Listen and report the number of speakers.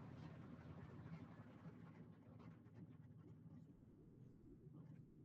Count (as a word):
zero